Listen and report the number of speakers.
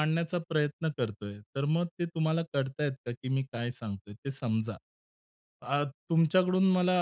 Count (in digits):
1